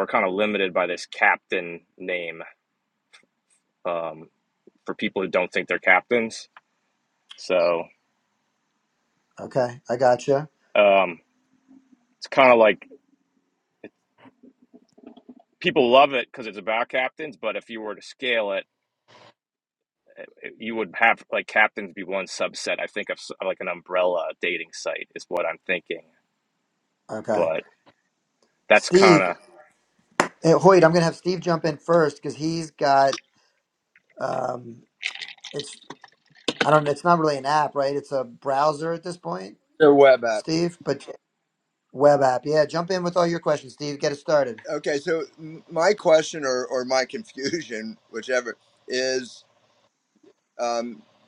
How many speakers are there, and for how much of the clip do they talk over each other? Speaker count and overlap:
3, about 2%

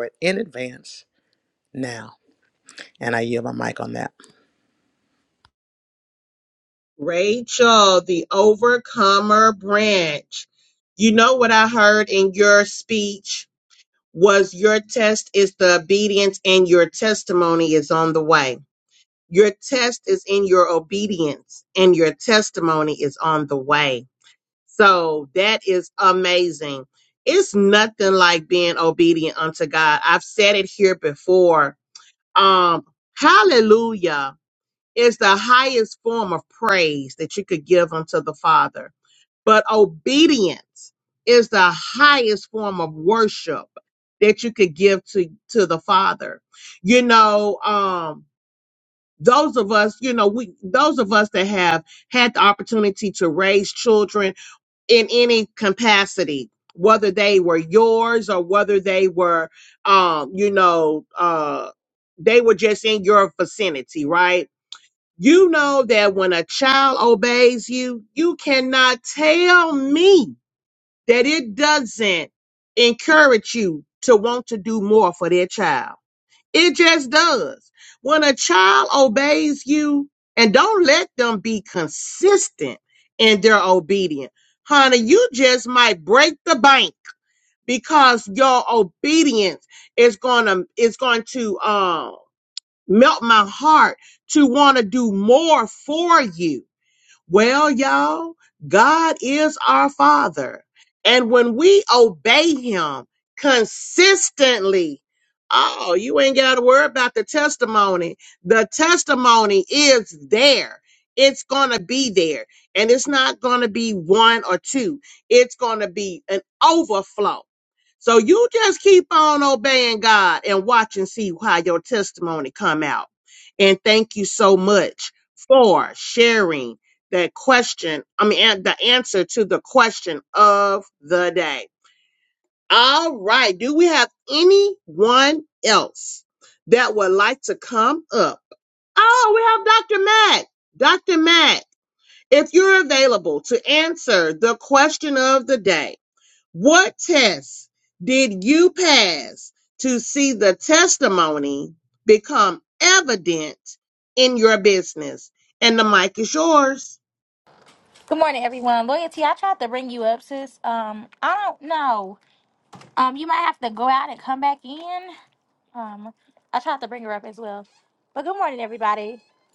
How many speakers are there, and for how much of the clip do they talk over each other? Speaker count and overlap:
3, no overlap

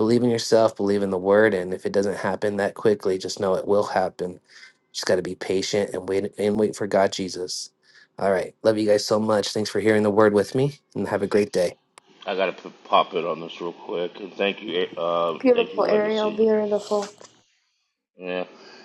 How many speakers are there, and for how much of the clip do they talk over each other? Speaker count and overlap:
3, about 6%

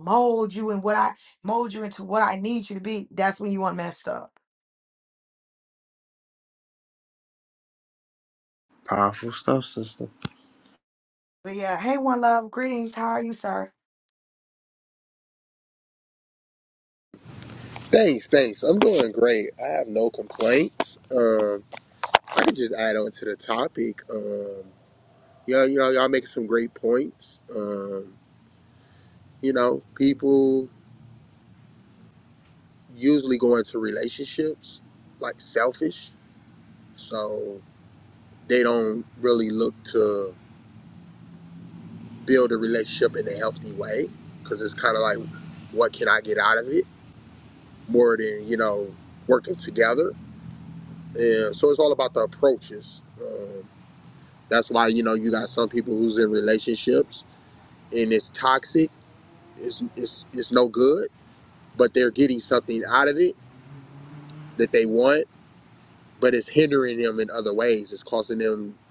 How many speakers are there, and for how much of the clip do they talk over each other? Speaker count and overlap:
3, no overlap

